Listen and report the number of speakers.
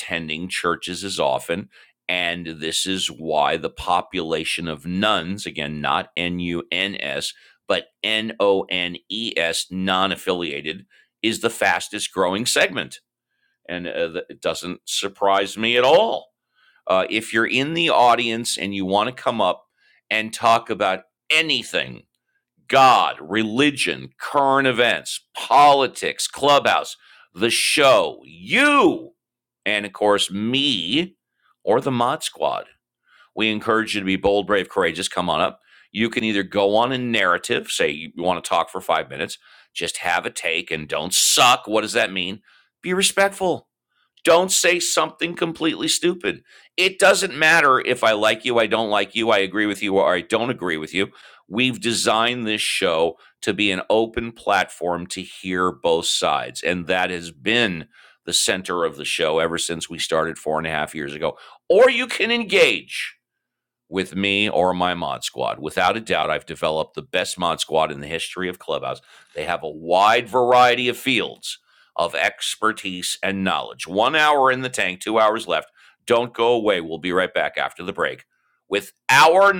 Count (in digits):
1